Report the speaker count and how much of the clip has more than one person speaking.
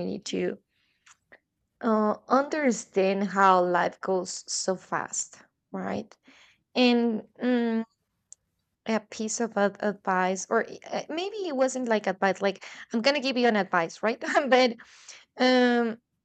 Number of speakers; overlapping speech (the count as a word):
one, no overlap